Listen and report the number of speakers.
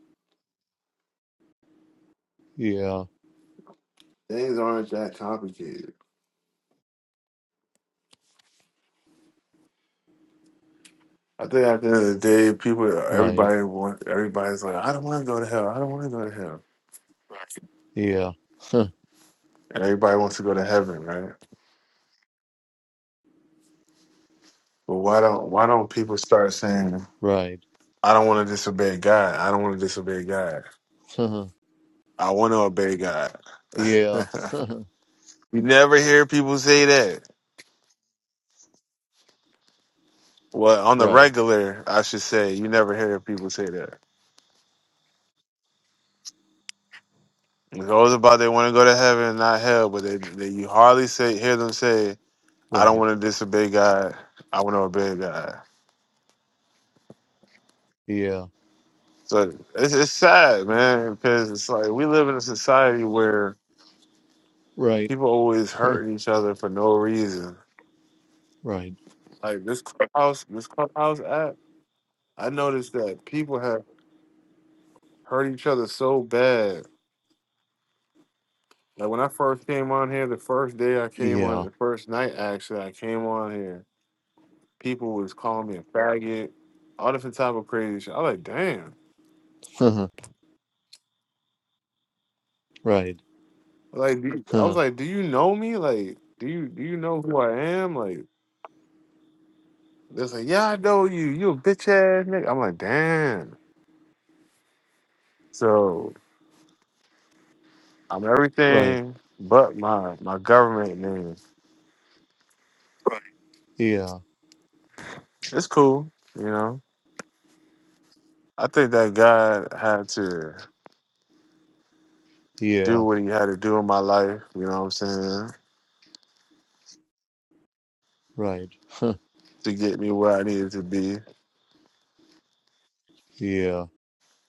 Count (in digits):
2